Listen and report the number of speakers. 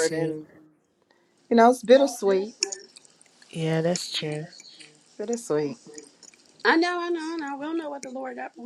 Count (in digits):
3